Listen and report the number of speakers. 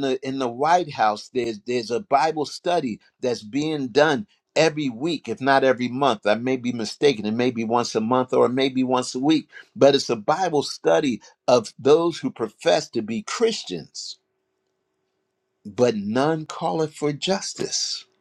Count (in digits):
1